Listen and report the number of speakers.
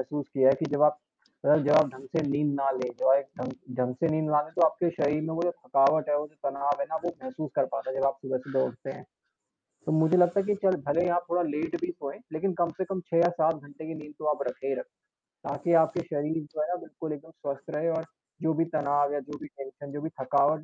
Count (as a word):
one